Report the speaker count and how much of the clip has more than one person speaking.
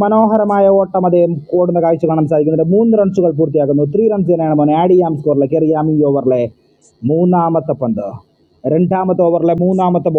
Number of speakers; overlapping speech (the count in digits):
1, no overlap